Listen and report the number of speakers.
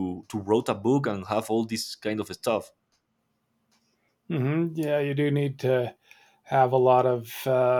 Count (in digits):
2